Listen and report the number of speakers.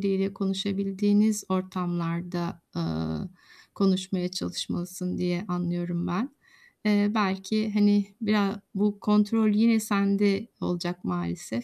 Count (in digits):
1